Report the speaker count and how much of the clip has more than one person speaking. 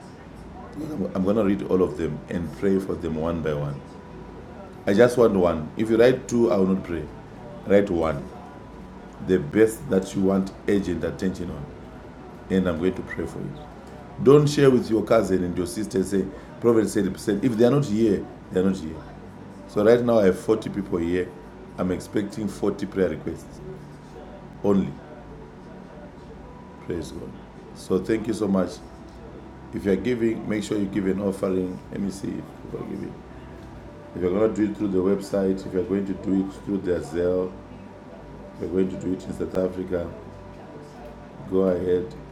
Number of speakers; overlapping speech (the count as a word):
one, no overlap